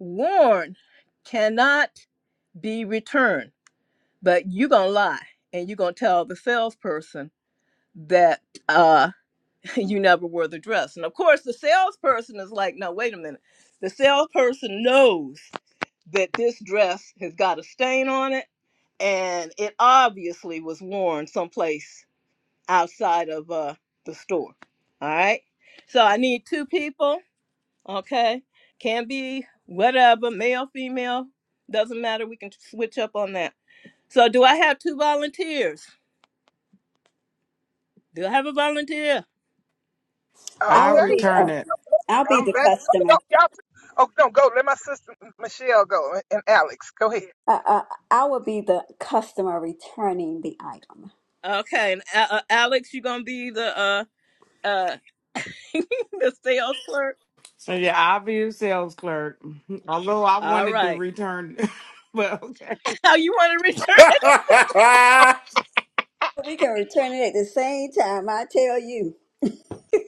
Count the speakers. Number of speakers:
five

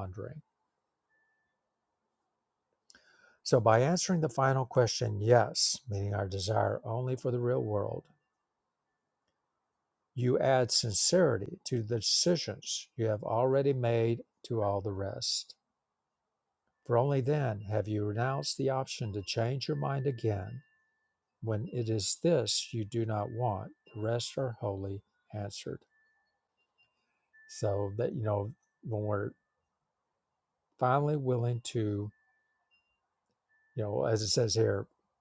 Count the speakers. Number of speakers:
one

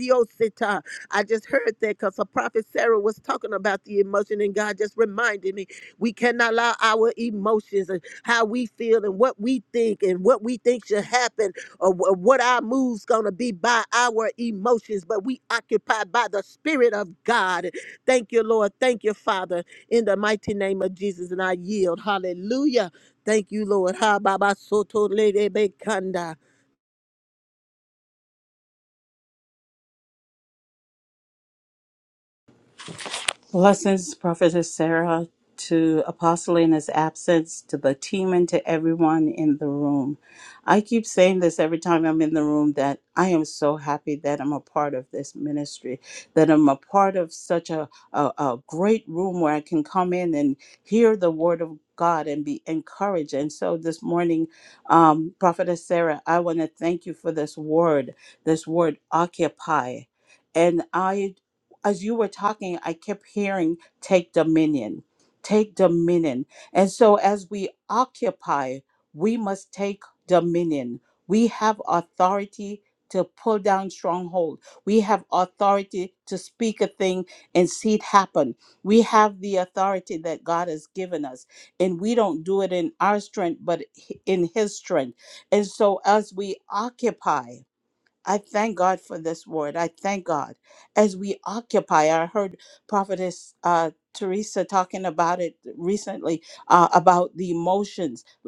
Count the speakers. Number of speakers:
two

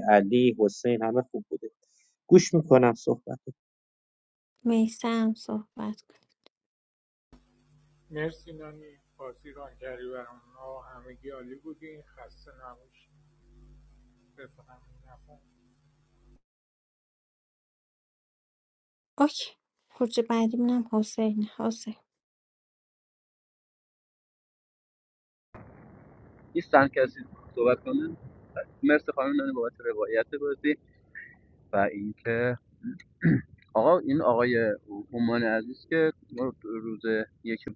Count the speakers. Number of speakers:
four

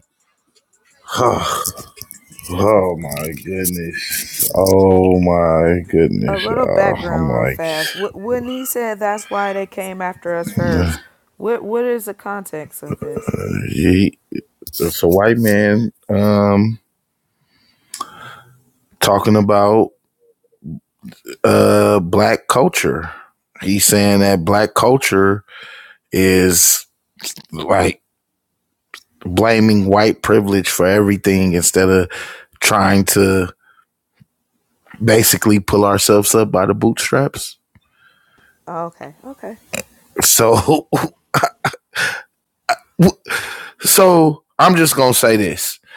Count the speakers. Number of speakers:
two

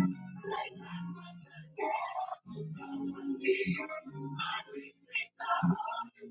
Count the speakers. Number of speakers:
zero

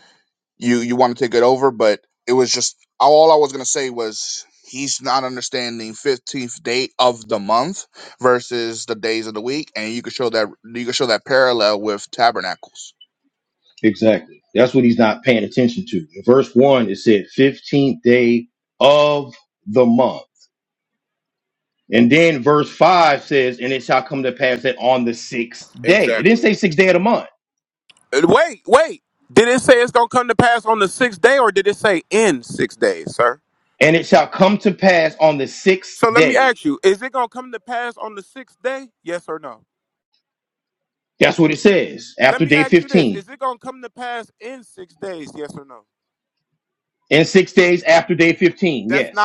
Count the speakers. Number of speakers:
three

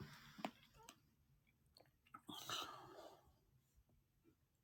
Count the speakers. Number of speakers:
zero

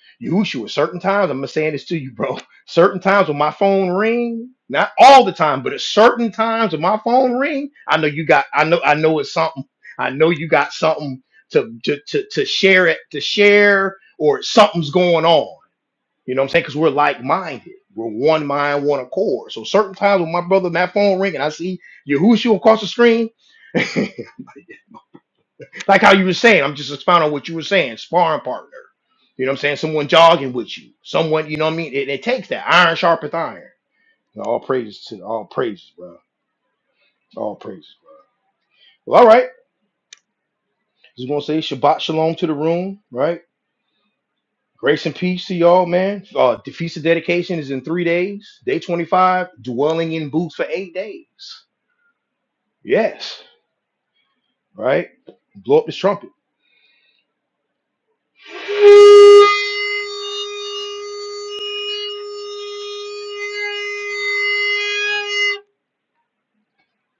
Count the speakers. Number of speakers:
one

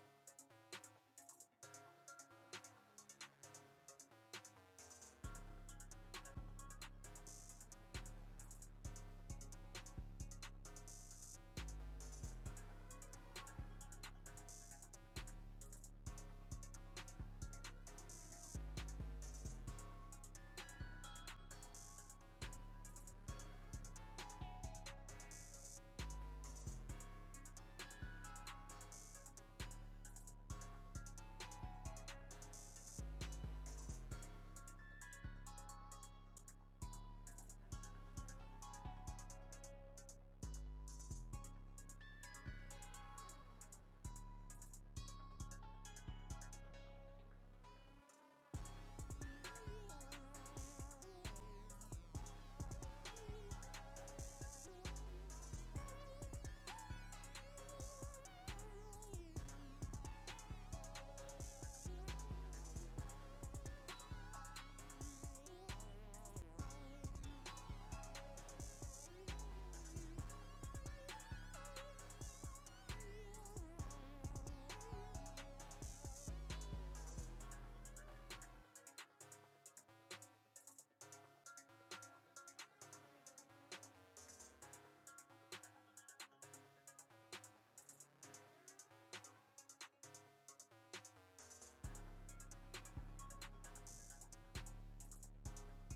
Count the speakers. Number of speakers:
zero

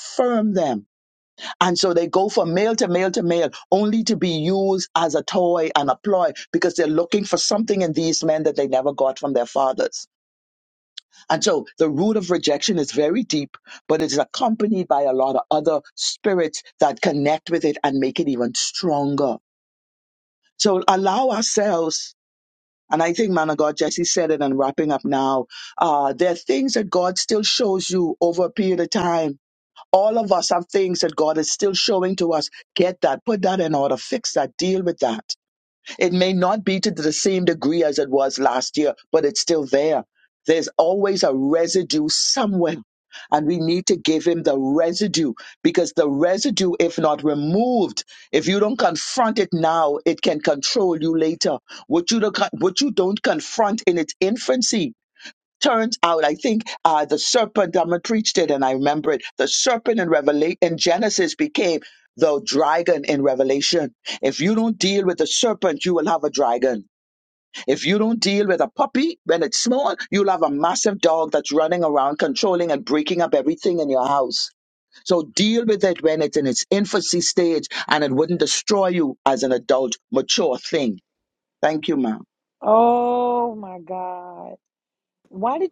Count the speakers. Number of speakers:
two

